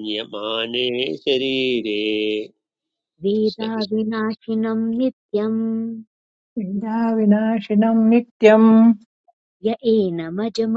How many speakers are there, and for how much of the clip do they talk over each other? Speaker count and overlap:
three, about 4%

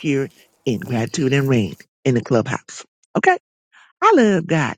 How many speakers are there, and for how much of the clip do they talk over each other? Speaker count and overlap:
one, no overlap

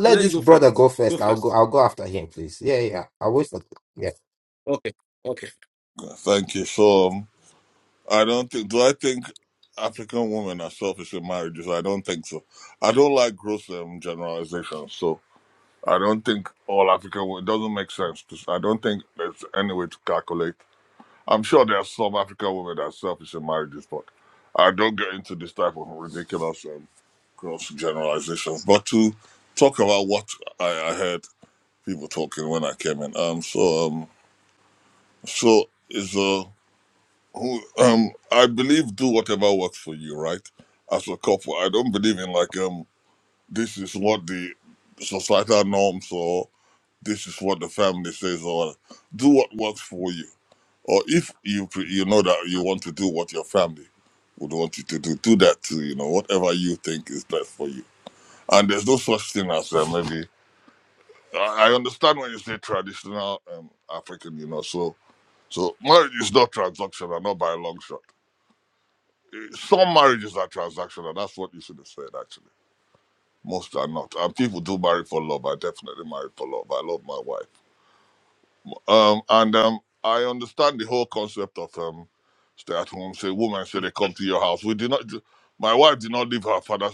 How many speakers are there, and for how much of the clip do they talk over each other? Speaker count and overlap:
three, about 1%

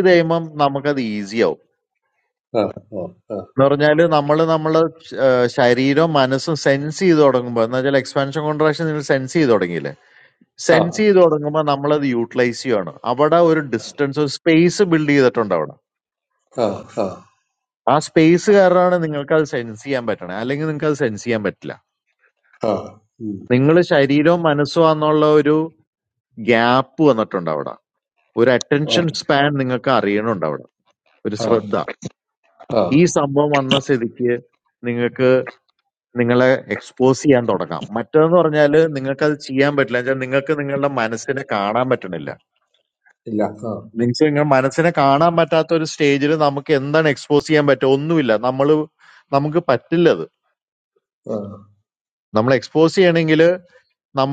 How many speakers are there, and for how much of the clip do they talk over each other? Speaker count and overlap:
two, about 1%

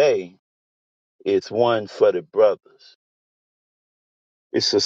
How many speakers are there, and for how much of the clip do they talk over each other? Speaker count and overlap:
one, no overlap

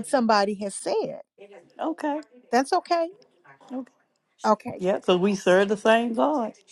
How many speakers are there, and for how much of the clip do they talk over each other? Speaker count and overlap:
two, no overlap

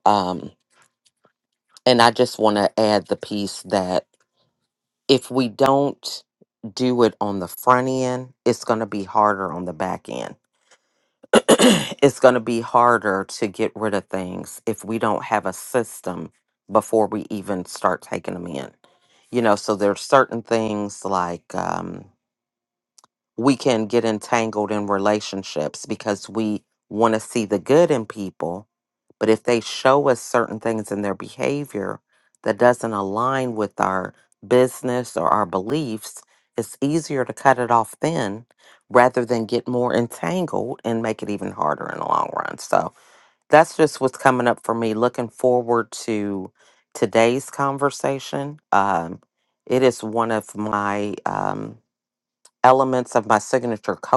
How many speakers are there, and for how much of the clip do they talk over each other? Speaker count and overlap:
one, no overlap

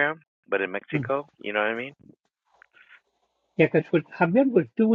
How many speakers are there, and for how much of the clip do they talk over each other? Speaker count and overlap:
two, about 2%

